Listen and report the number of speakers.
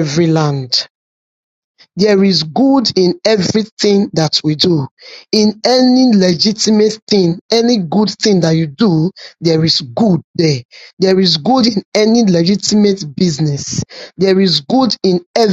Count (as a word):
one